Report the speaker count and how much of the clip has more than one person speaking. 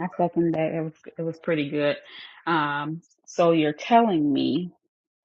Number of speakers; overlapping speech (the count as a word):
one, no overlap